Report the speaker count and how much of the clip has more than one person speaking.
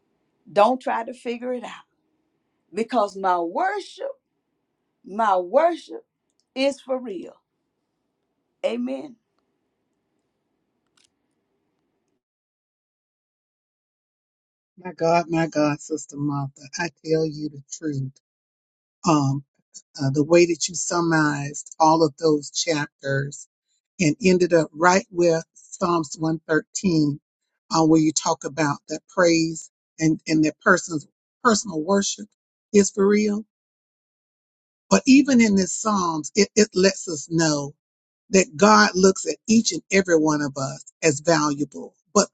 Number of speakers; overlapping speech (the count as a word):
two, no overlap